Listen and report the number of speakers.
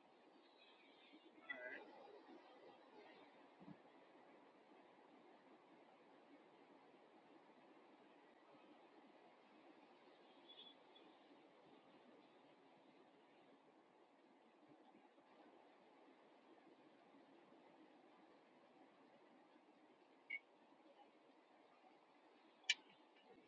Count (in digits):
0